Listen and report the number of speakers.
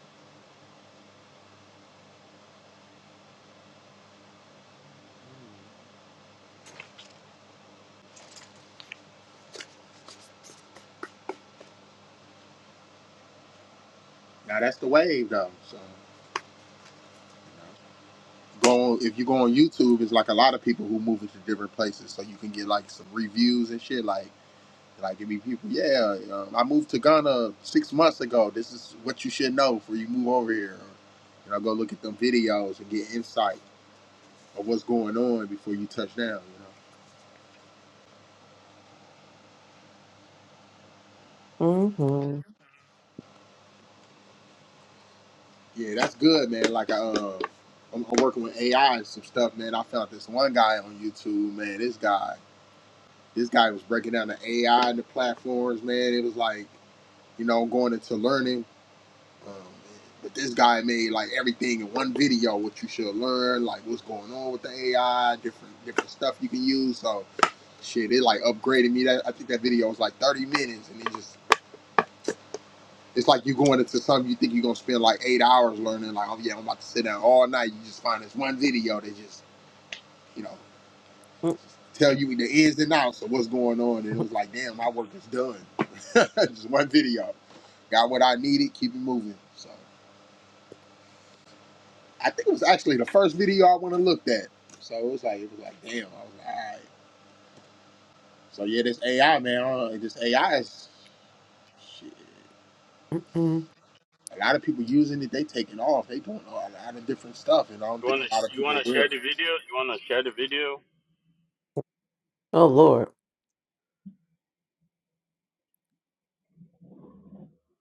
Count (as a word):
three